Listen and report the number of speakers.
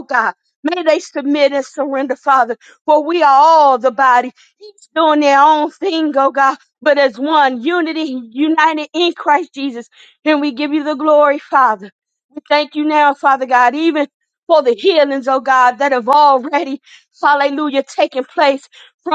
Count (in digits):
1